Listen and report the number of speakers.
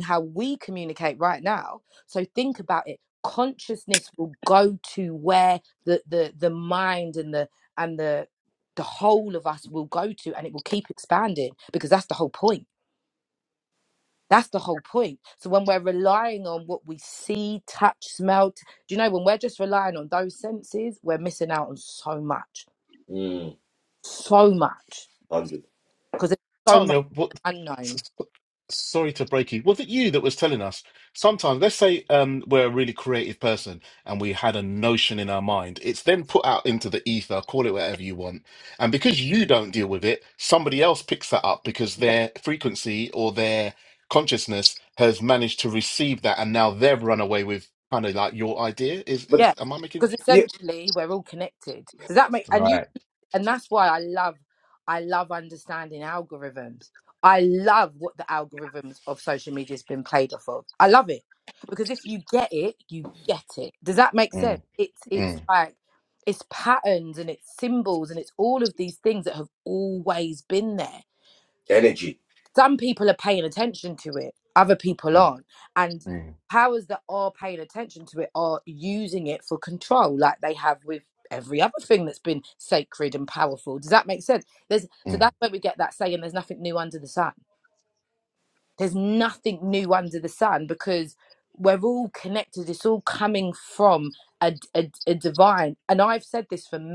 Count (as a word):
three